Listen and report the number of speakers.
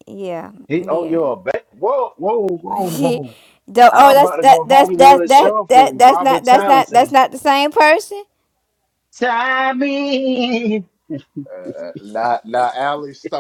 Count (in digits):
3